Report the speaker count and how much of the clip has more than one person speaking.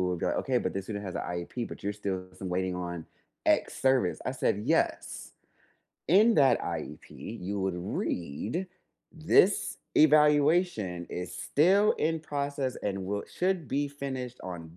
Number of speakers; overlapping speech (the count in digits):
1, no overlap